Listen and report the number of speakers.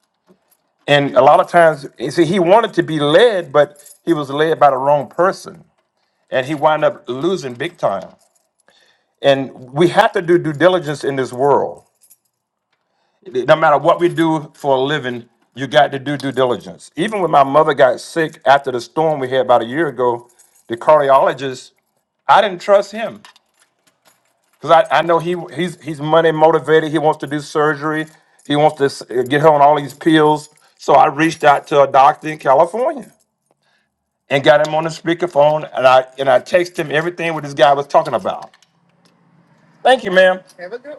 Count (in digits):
1